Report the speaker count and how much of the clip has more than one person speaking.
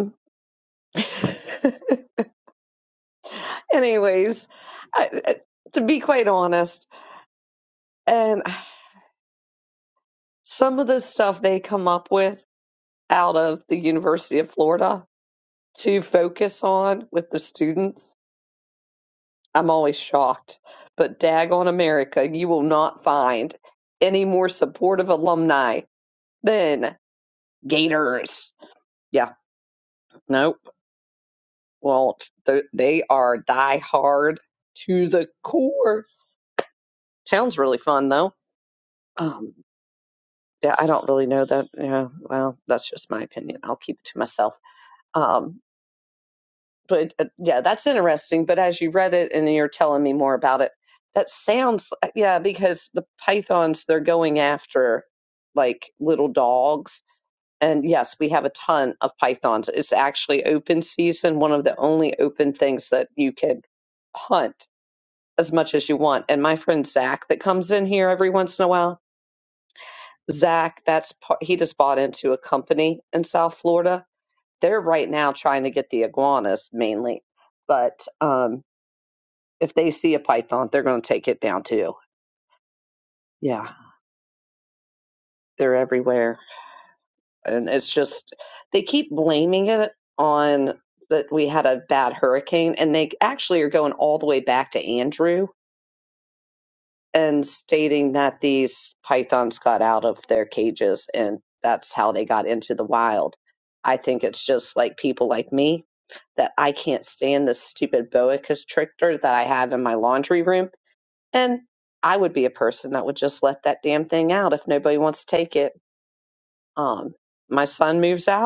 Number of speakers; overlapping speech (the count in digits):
1, no overlap